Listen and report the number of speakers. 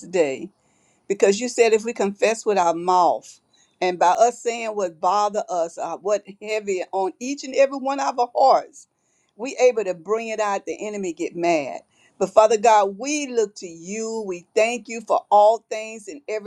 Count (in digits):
1